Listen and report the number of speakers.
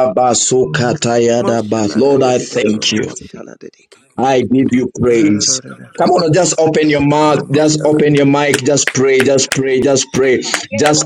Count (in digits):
2